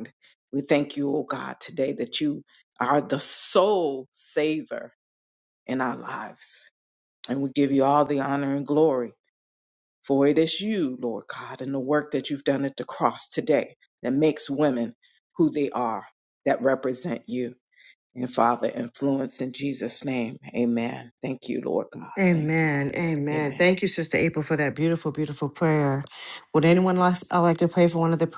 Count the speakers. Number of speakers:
2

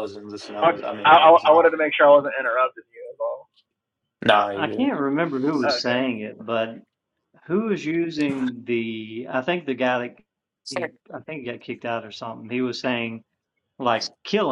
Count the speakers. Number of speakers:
3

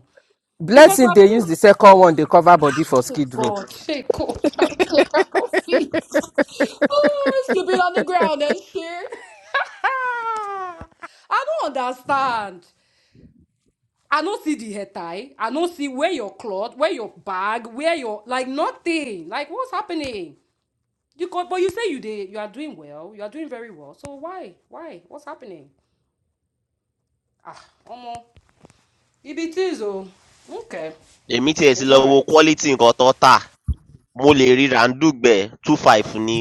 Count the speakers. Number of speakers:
3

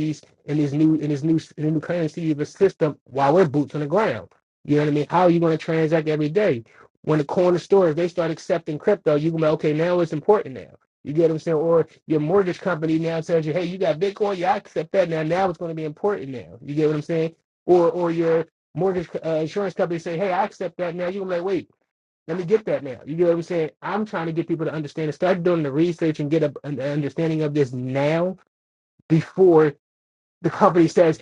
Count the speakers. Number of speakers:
1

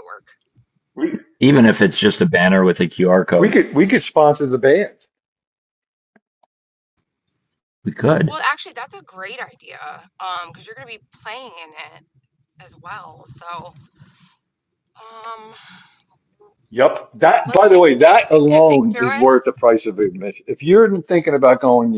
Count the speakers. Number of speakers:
3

